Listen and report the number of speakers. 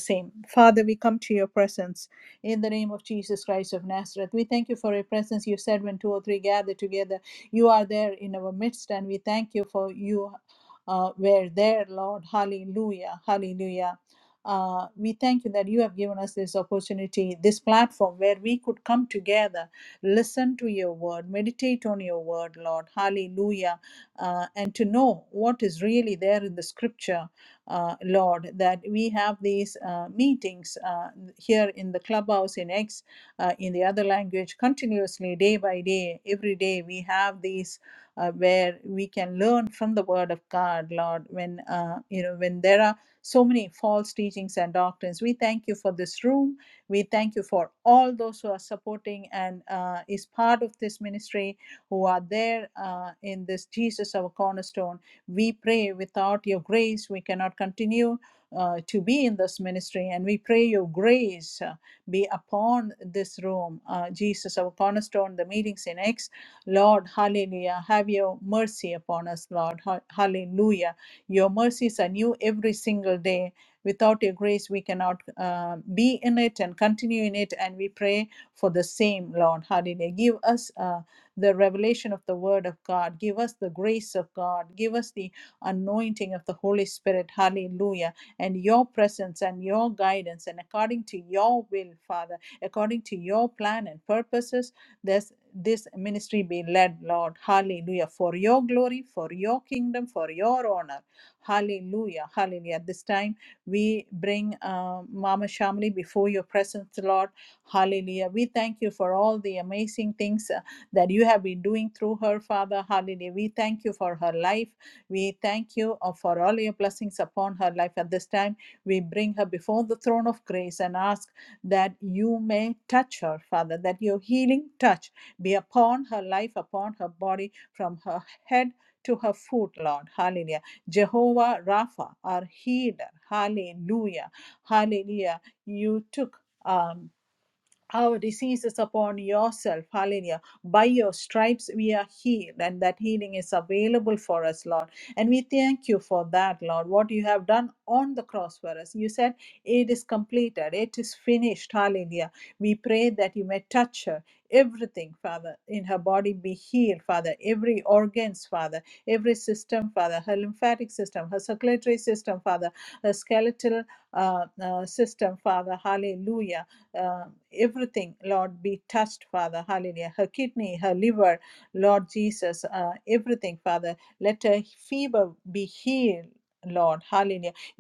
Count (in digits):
1